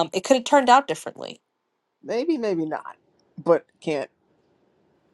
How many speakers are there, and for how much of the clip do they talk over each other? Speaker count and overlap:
two, no overlap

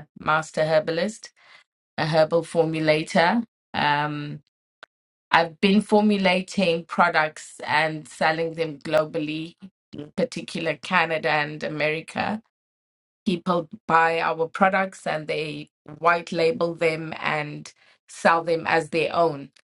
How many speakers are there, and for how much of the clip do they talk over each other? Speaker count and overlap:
one, no overlap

